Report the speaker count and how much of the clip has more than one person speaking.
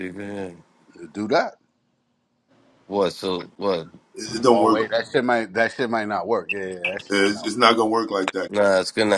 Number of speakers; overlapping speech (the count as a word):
three, about 8%